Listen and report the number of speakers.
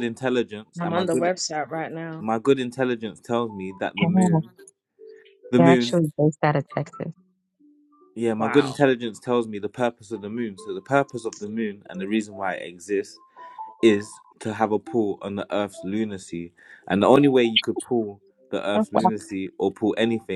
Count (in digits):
3